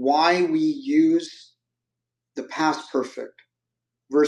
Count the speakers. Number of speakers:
one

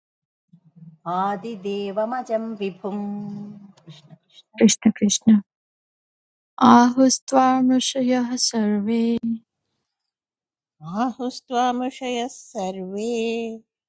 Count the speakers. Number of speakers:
three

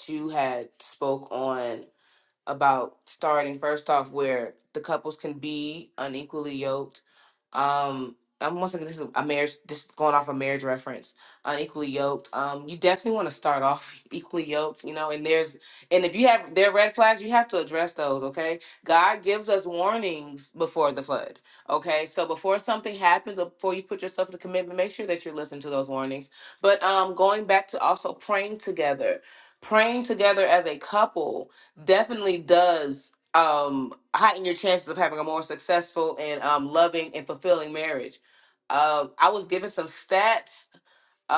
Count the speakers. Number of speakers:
one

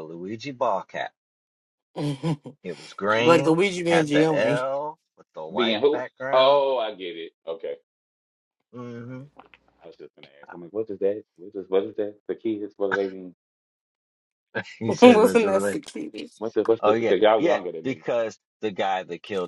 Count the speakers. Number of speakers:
three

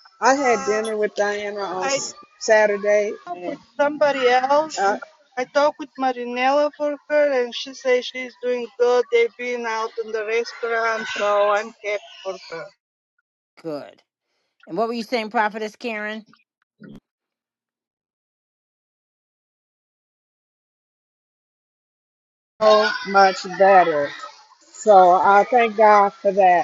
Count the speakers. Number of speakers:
three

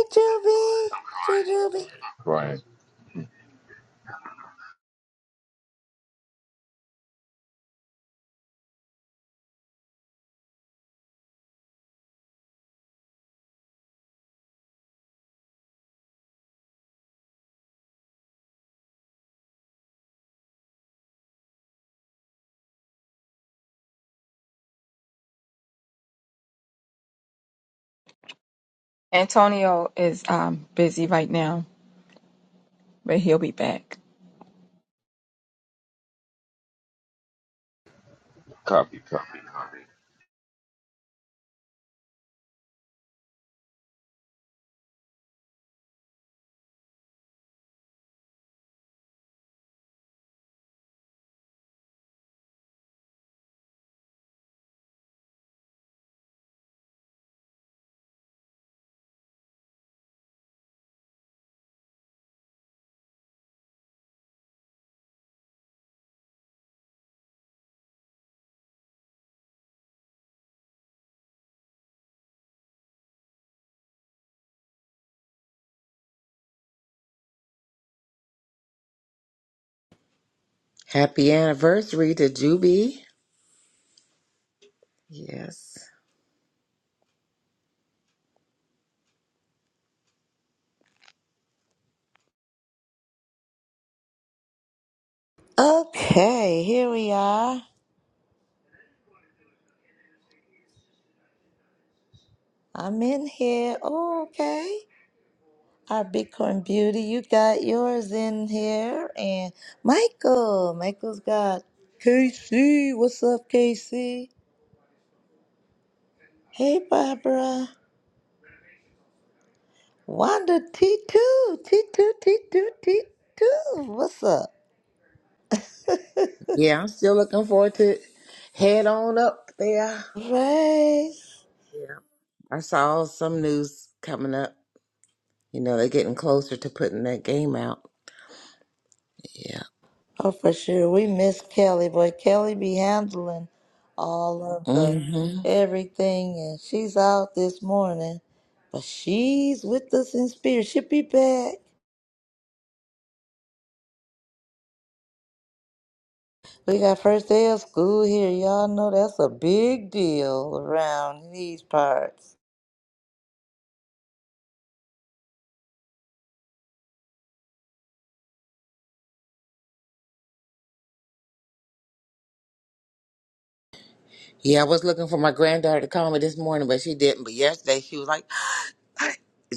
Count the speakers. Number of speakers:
four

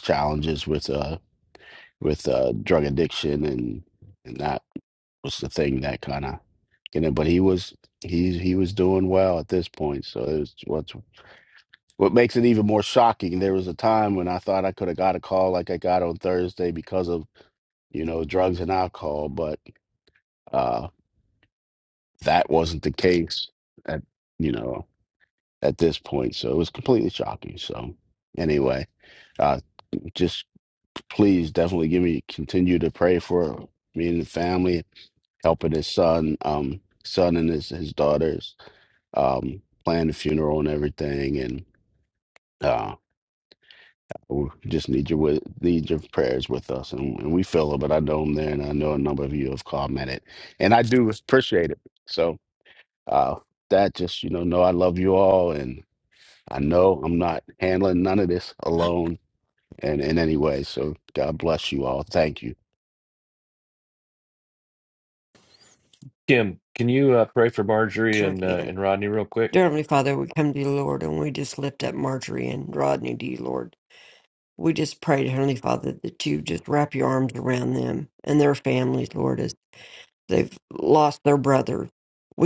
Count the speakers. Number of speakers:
three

